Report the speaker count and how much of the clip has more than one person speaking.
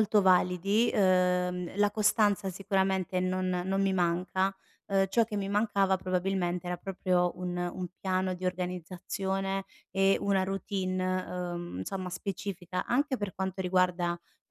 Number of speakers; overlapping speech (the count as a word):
one, no overlap